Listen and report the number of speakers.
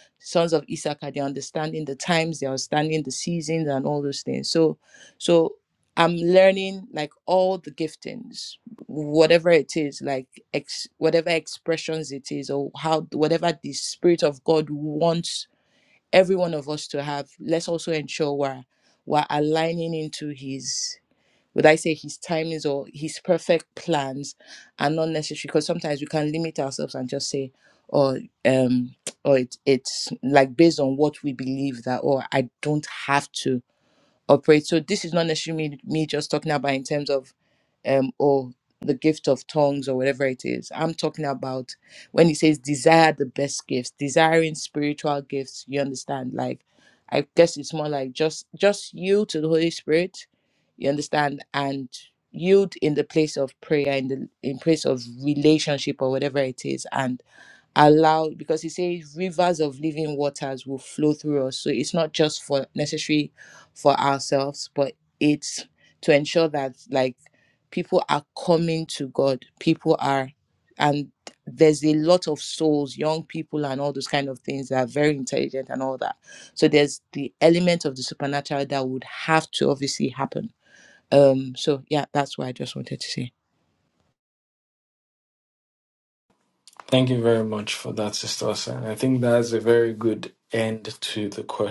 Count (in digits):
2